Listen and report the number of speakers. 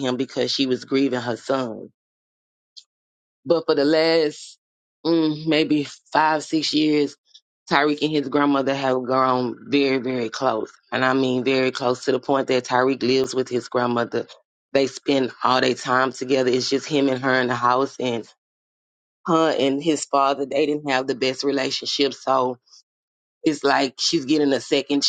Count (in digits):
1